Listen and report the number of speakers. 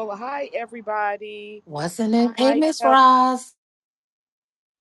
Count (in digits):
2